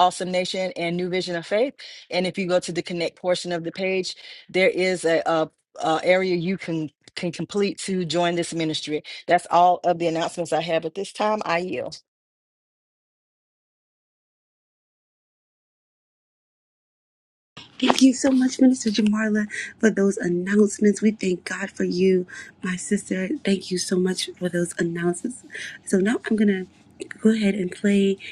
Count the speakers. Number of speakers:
2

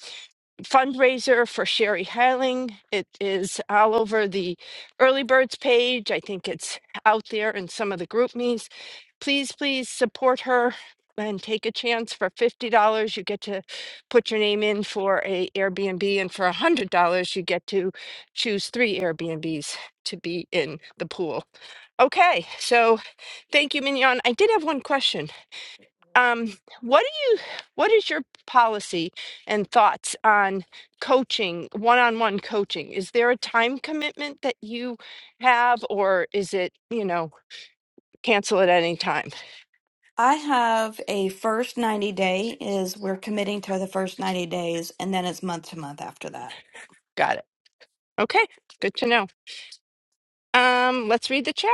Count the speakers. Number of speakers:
2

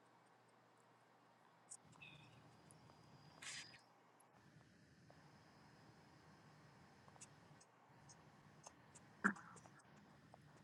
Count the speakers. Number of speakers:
0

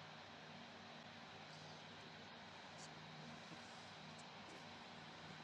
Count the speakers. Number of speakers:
0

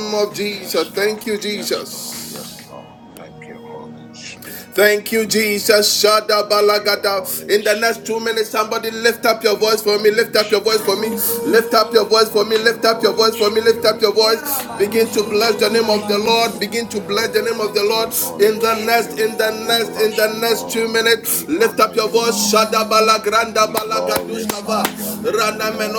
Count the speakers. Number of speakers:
2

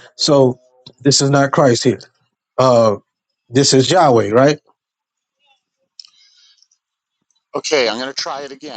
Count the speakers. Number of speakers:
2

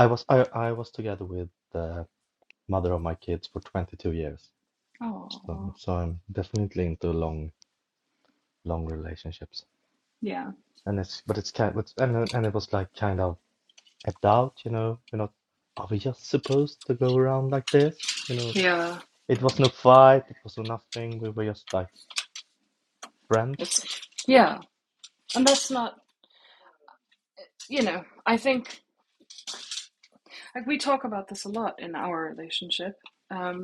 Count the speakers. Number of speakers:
2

